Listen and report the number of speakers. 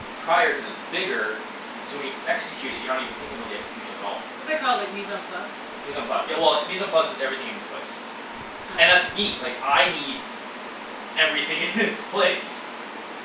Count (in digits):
2